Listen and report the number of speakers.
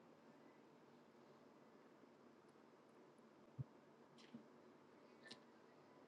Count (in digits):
0